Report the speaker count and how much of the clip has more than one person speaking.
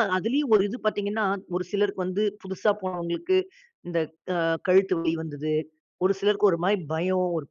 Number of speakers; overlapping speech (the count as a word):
one, no overlap